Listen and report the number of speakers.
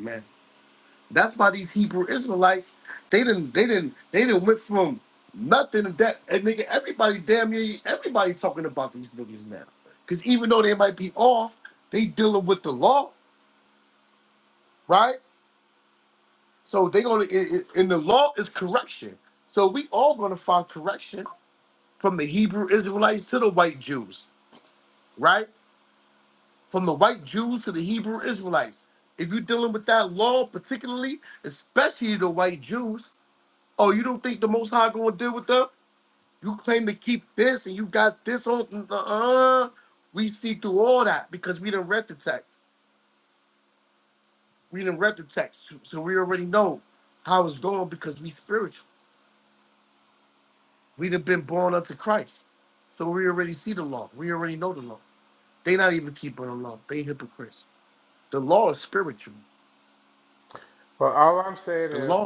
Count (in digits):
2